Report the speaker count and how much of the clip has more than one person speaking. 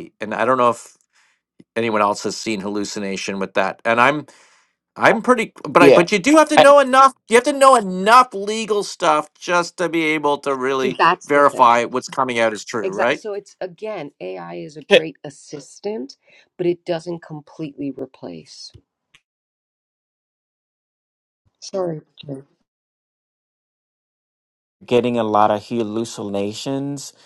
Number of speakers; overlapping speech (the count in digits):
3, about 5%